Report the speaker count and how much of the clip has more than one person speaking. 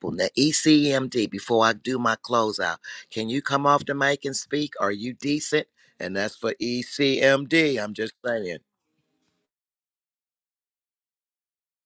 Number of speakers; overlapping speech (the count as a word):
one, no overlap